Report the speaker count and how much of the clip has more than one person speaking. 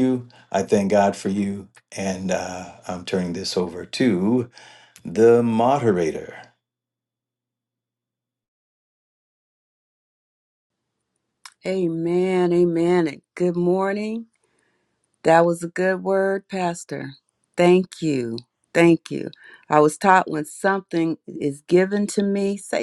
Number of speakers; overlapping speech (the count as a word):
two, no overlap